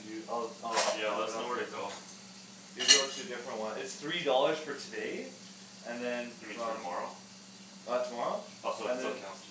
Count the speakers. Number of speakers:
2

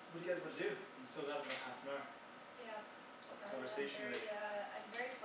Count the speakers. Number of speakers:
2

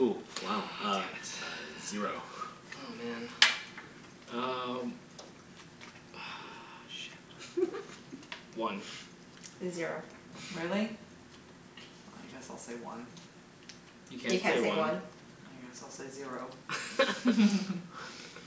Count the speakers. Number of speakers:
4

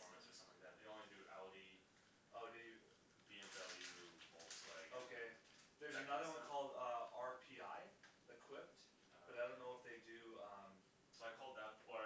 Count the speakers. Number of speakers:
2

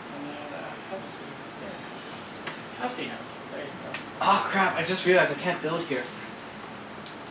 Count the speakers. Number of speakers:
2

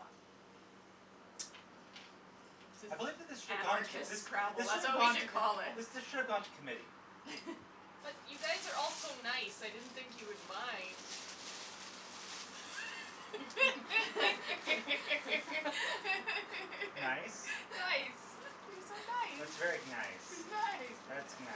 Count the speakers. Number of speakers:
4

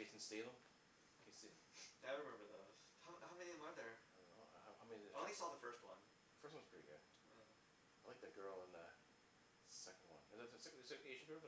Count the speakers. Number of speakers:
2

